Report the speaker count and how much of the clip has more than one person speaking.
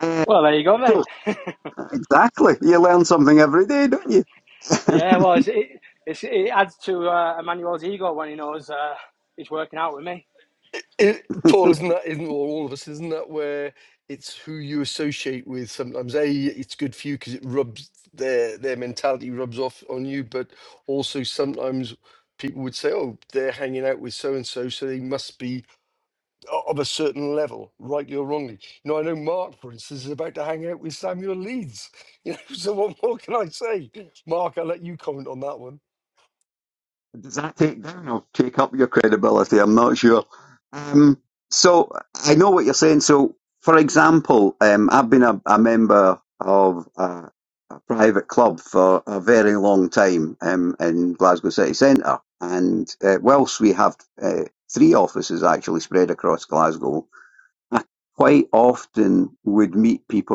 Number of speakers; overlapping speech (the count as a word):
three, under 1%